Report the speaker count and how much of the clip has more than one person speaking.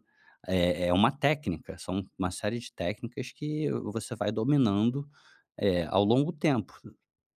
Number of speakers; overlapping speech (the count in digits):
1, no overlap